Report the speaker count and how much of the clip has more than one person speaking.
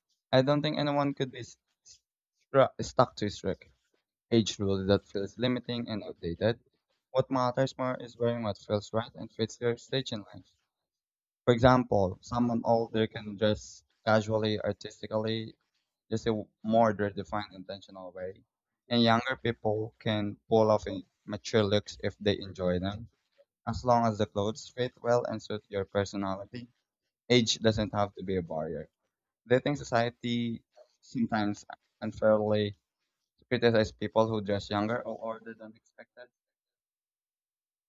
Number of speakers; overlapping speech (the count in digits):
1, no overlap